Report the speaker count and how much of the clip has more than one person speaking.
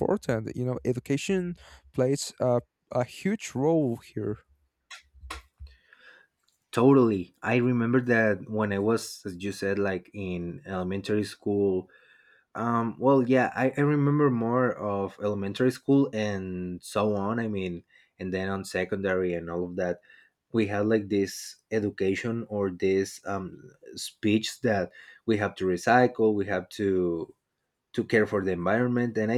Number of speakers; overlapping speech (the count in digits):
2, no overlap